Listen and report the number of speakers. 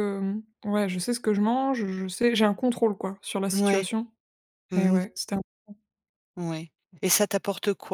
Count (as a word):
two